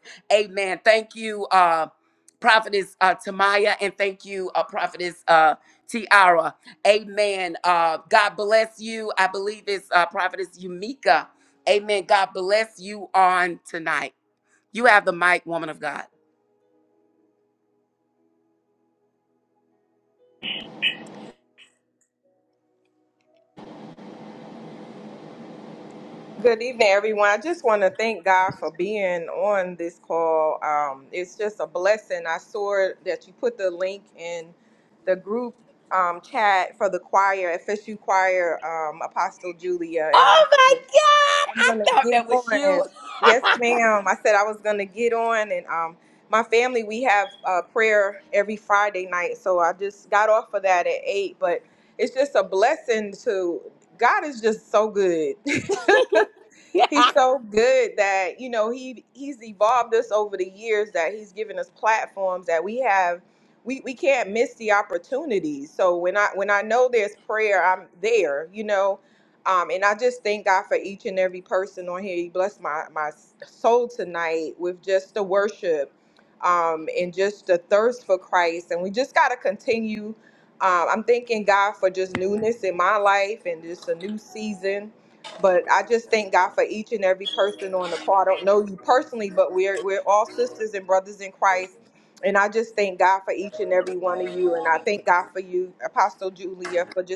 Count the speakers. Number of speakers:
two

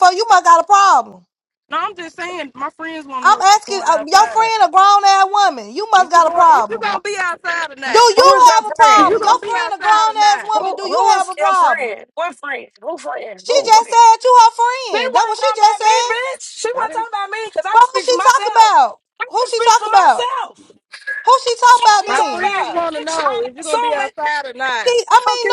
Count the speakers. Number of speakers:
three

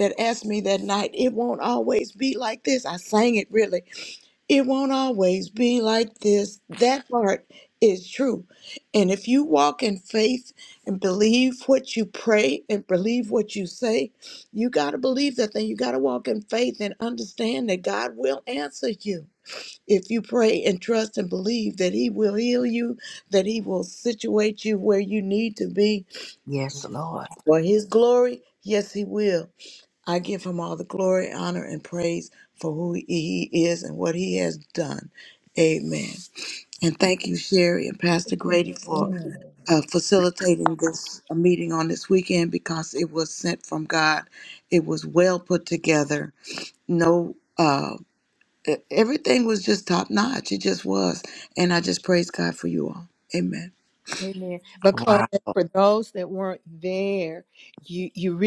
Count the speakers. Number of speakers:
three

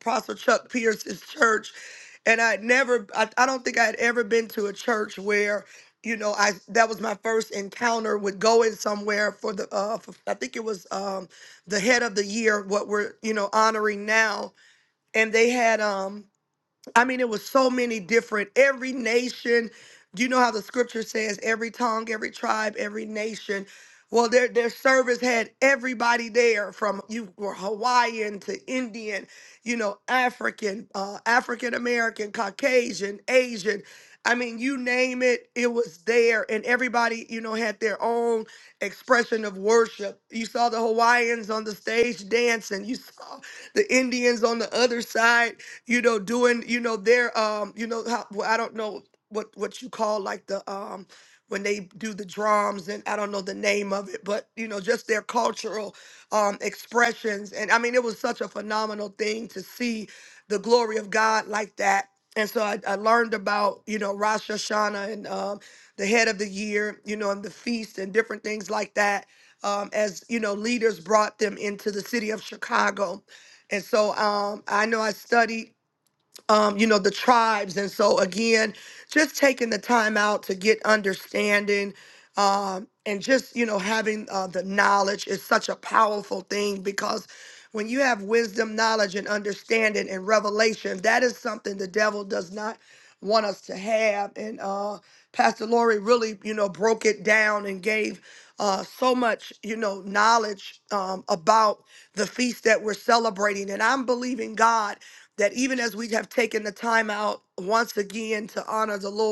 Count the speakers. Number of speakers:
one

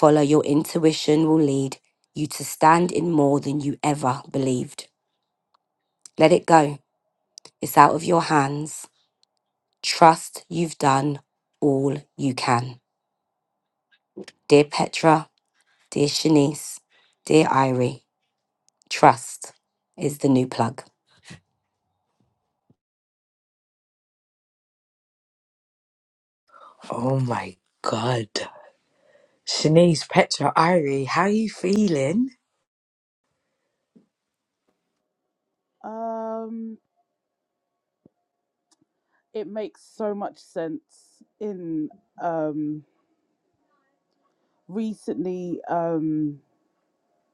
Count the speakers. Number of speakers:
three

